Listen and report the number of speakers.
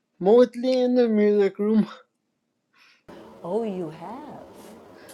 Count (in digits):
2